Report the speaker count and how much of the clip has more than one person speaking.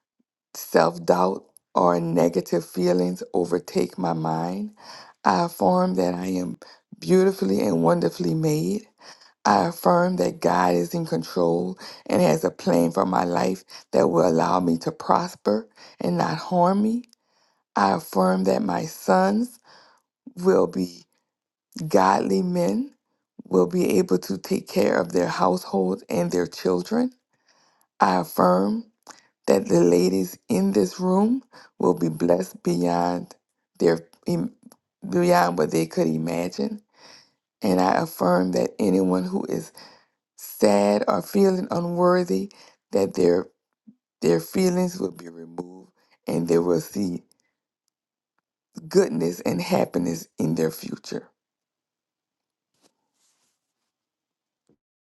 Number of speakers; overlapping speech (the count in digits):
1, no overlap